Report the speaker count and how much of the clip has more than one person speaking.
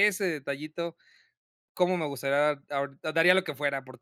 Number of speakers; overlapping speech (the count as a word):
one, no overlap